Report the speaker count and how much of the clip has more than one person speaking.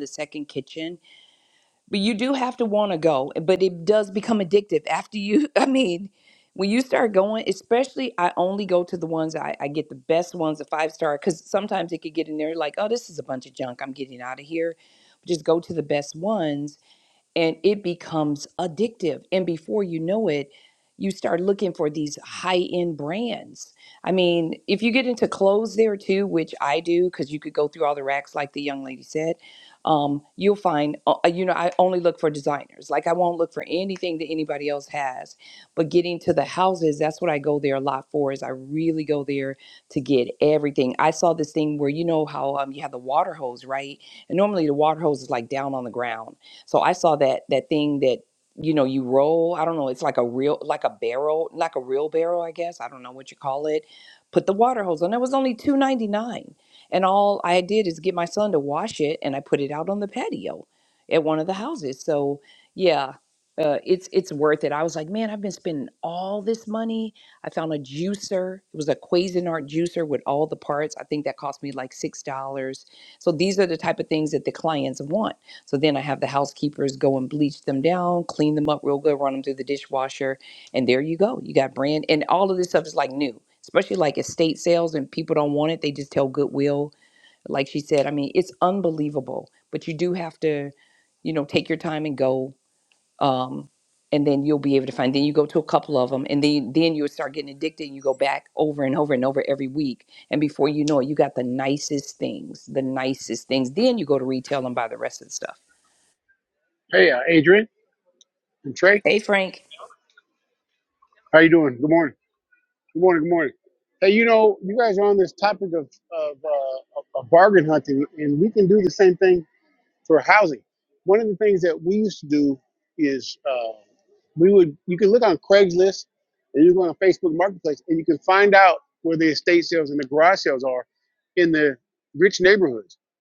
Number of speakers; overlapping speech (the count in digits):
2, no overlap